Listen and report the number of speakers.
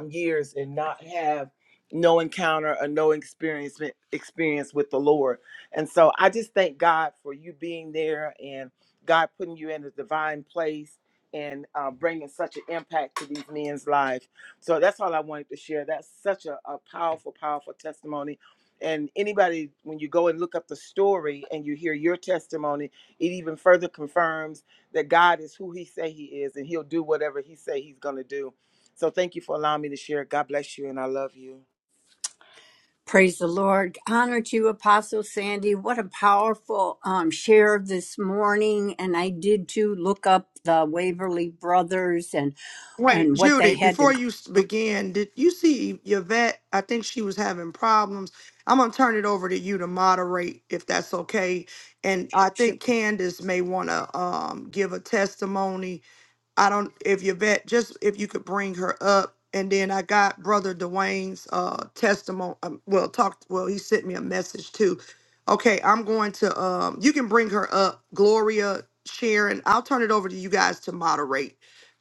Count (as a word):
three